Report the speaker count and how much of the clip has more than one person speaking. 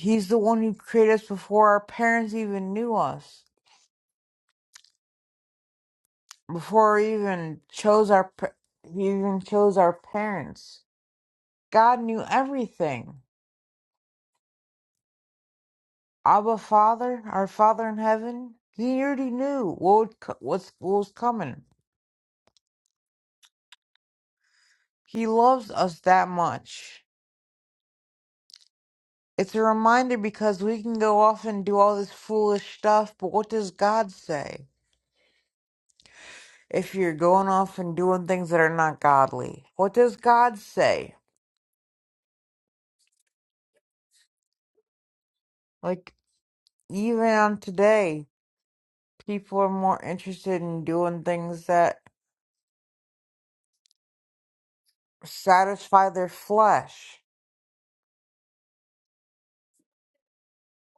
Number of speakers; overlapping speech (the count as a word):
one, no overlap